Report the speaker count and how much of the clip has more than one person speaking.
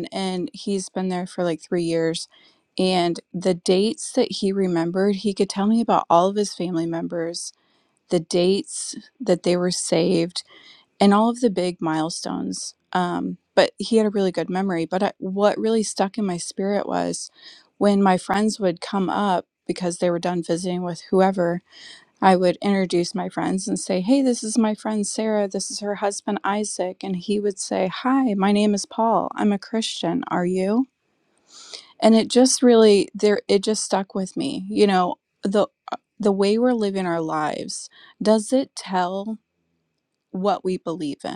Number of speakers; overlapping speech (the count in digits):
1, no overlap